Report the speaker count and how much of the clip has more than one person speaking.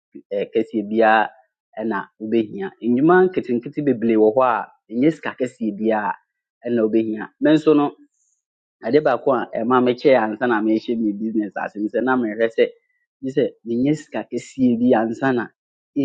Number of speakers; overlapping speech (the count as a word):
one, no overlap